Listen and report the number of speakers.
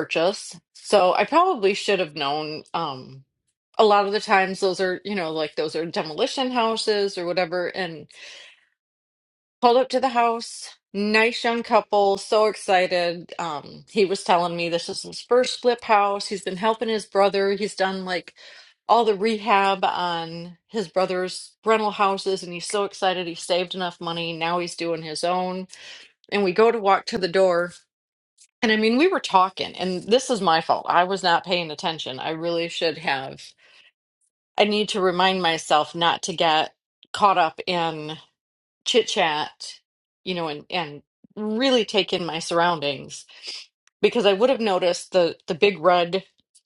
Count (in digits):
1